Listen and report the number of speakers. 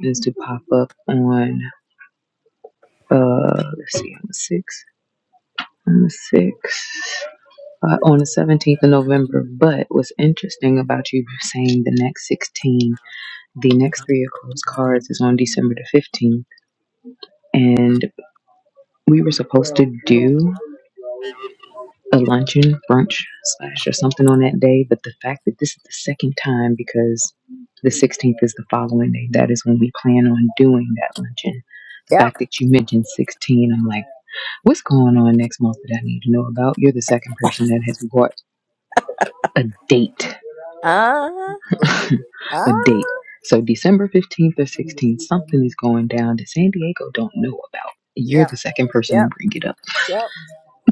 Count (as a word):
two